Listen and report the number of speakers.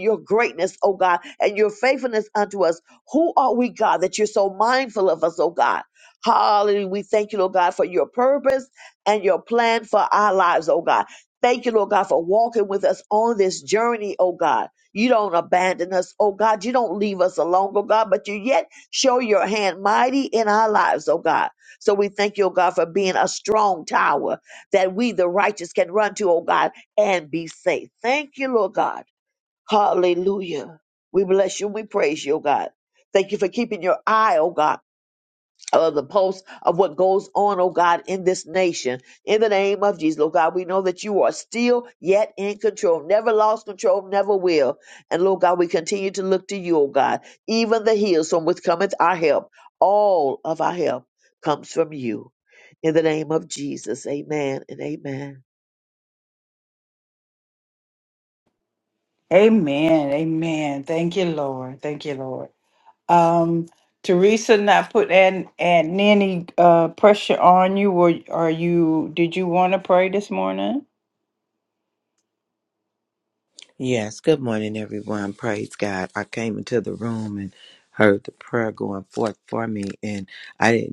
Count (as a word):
three